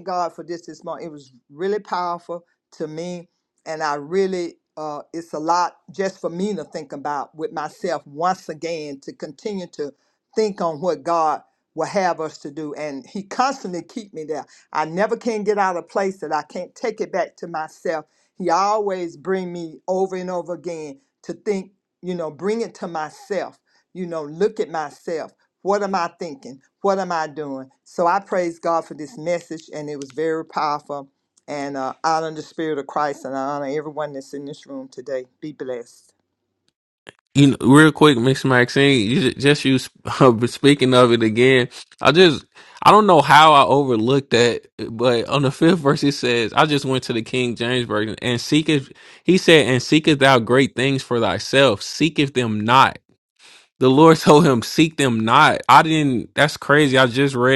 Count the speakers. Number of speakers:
2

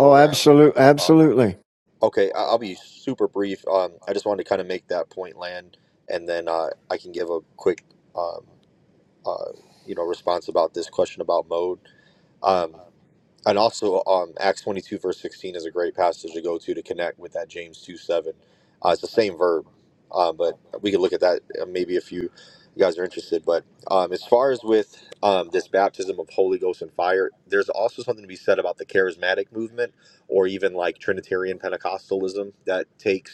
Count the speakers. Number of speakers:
2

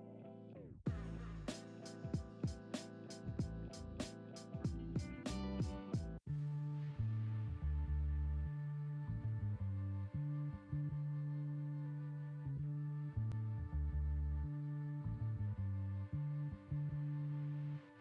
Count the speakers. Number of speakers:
0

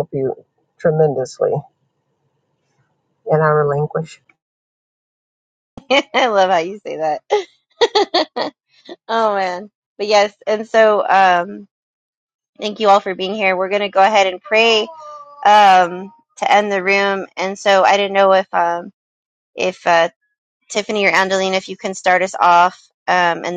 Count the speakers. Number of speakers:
2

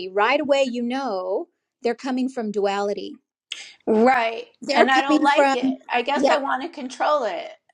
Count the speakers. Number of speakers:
2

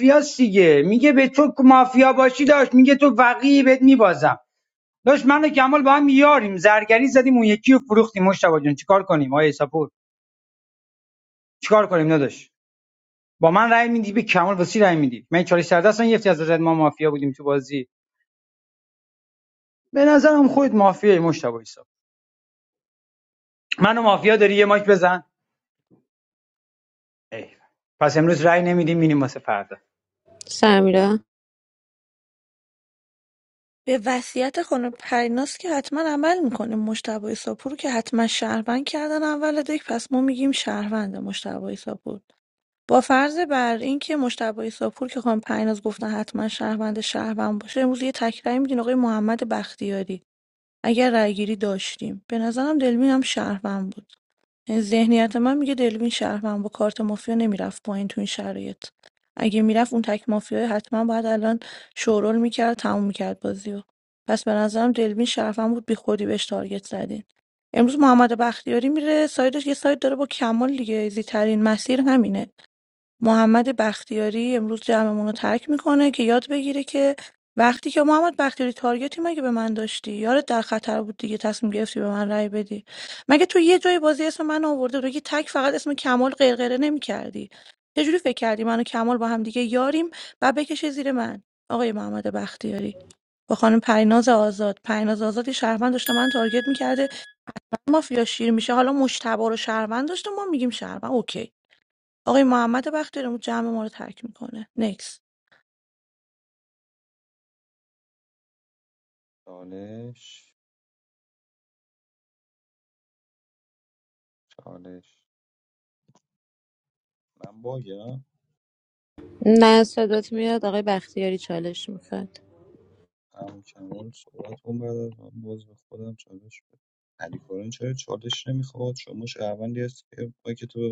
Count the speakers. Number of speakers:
4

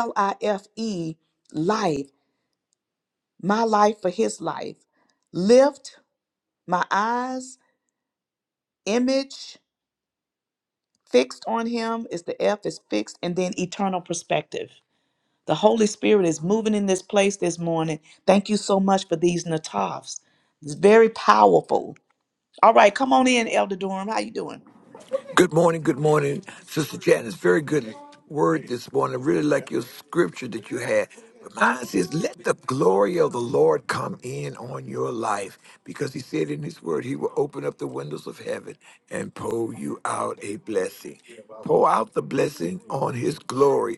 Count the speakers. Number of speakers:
2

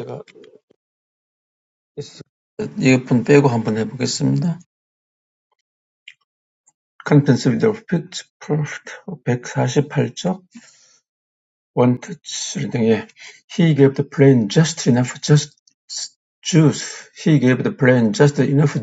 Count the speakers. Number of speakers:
1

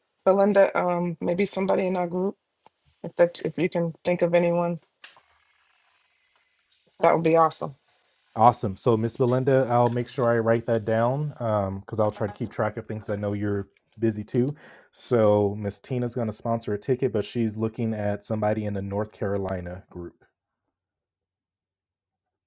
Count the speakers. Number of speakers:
2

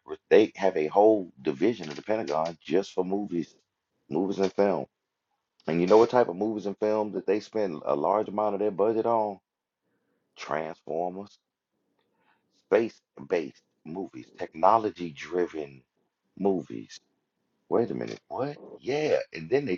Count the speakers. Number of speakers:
1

